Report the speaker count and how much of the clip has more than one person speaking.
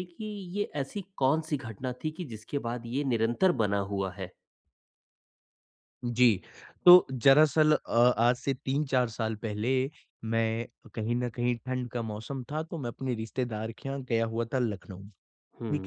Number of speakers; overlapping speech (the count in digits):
2, about 1%